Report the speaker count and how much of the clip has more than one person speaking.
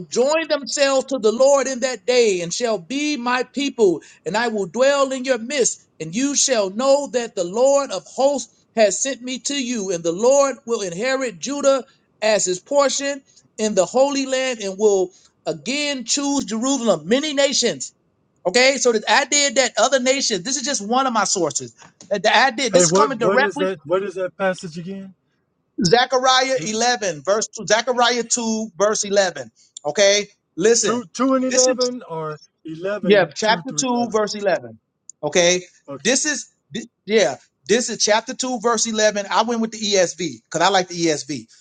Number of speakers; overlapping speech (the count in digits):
2, about 7%